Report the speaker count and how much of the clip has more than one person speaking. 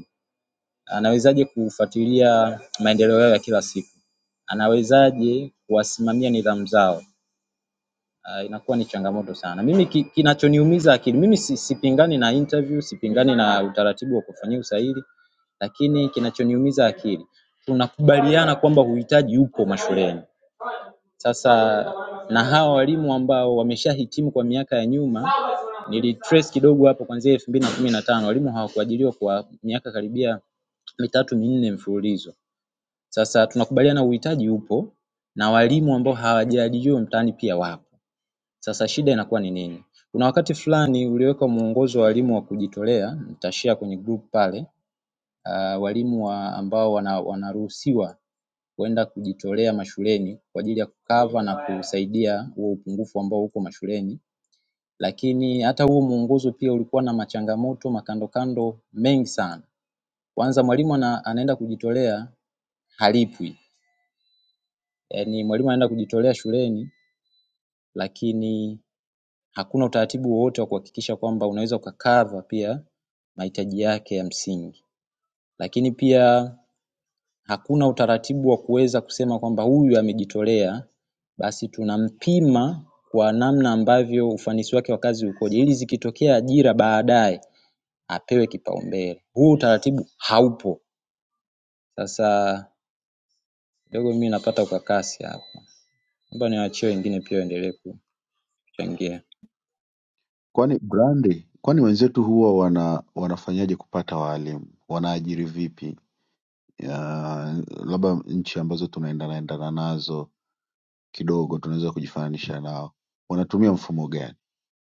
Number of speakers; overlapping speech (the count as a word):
two, no overlap